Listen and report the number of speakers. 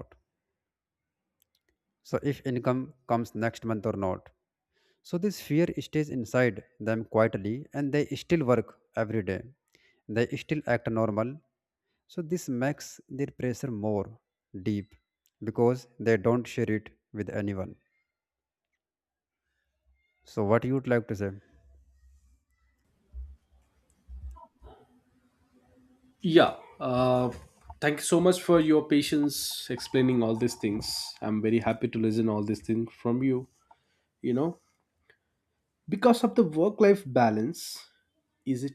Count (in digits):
2